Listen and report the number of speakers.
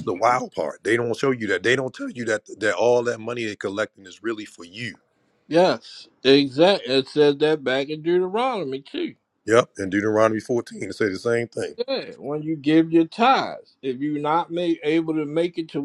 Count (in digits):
2